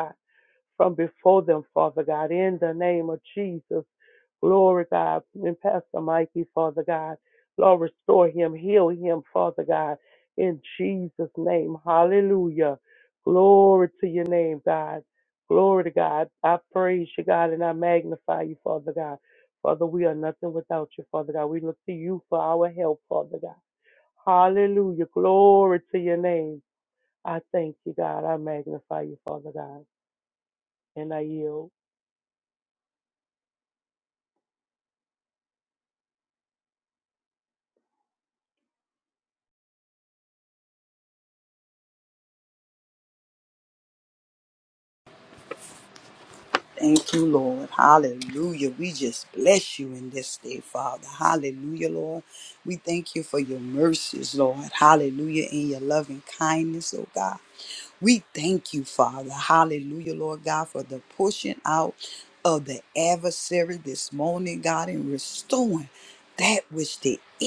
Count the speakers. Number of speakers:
2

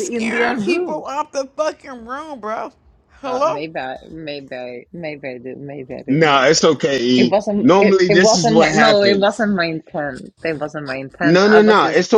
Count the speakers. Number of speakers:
3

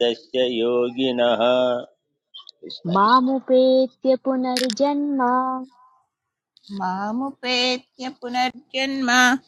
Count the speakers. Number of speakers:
3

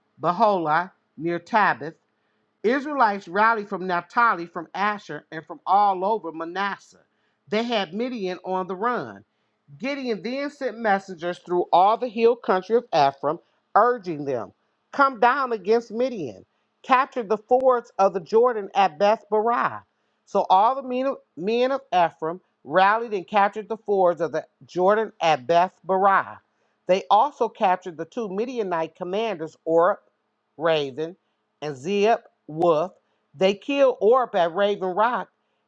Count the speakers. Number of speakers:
1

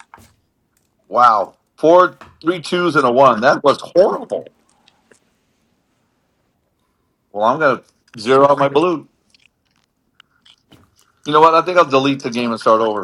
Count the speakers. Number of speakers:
1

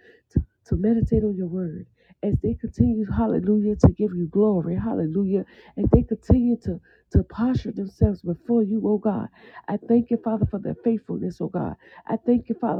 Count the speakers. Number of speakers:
1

